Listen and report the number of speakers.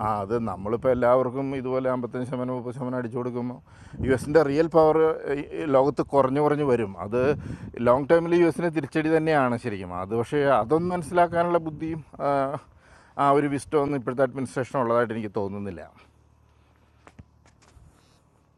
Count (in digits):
1